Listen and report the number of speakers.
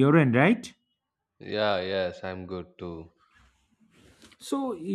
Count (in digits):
2